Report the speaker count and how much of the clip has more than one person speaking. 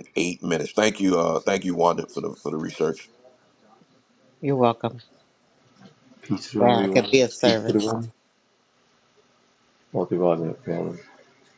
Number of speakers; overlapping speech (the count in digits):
3, about 12%